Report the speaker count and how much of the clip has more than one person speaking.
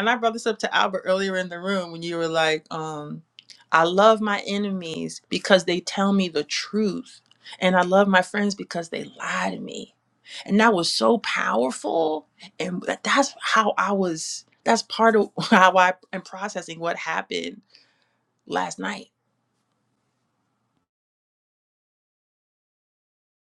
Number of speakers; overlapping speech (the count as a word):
one, no overlap